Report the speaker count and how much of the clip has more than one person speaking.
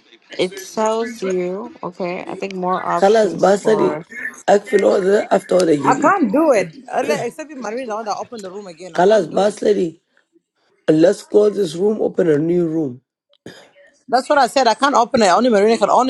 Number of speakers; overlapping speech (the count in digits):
3, about 12%